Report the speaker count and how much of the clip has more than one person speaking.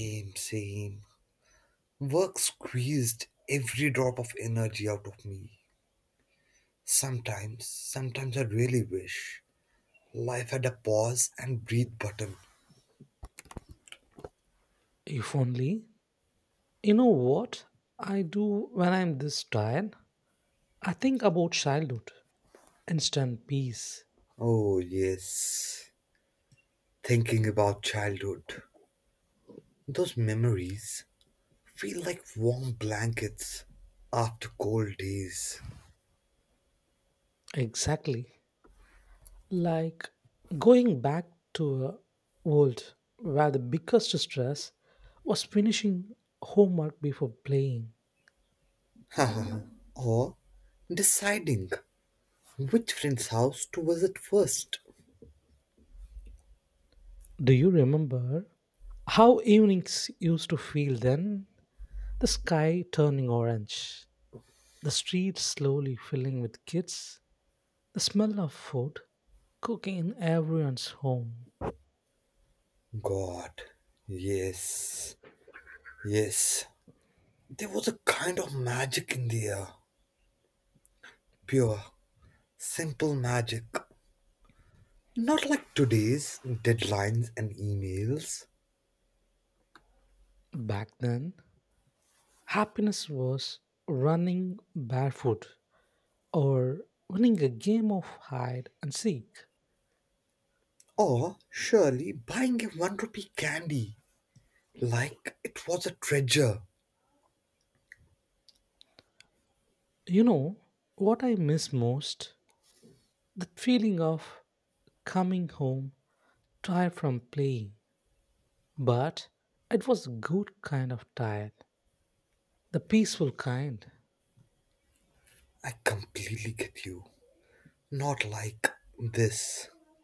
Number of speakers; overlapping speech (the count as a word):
two, no overlap